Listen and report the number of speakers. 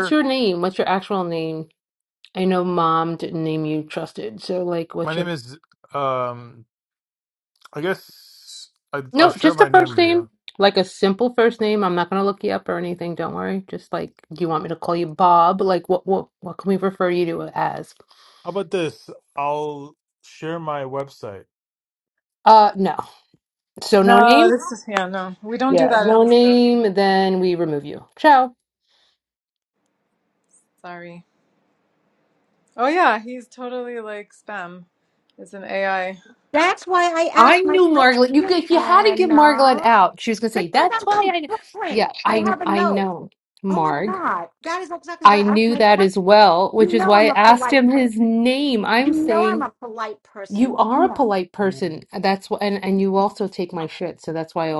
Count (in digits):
4